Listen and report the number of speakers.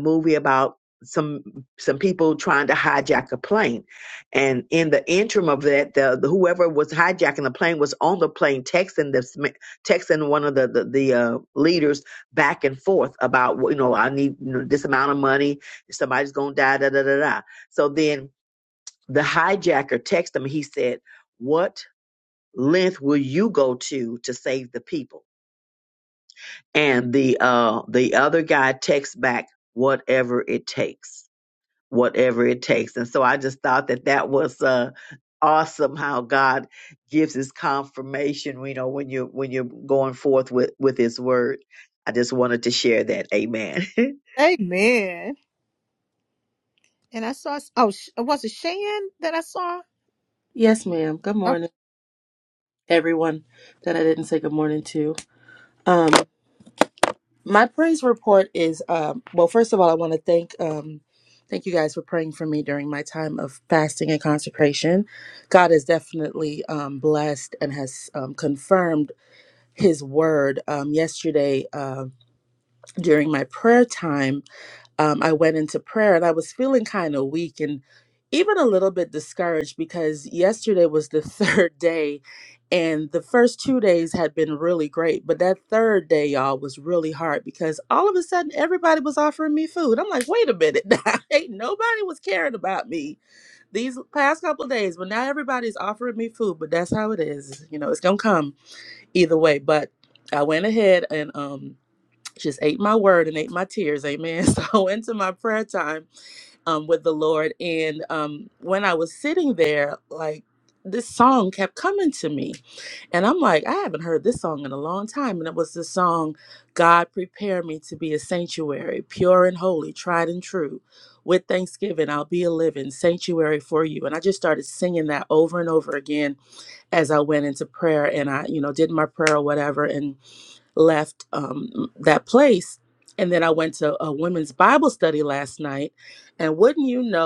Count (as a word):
three